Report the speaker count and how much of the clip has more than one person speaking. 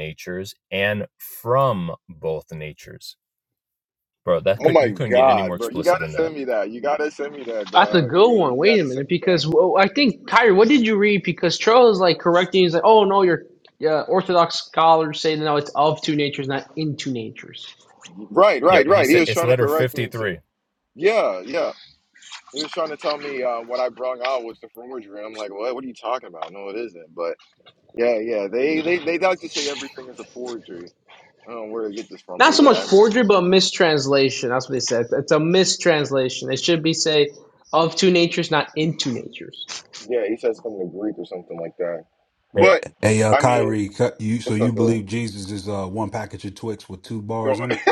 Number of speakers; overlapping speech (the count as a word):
four, about 15%